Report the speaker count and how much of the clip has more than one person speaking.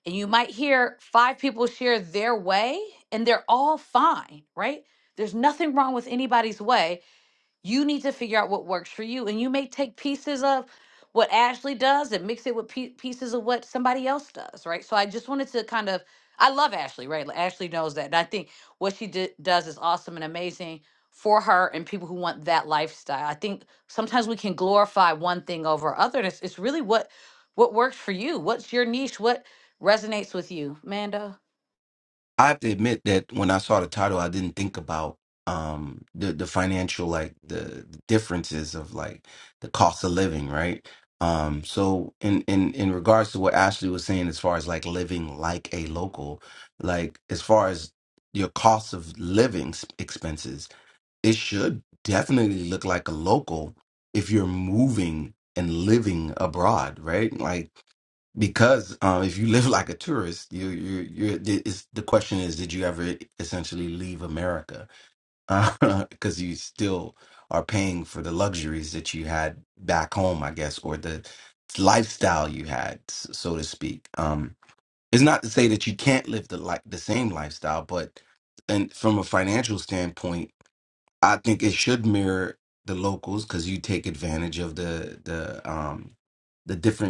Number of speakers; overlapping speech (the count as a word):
two, no overlap